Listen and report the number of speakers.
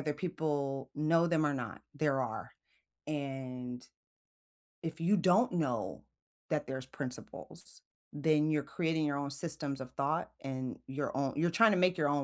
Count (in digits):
1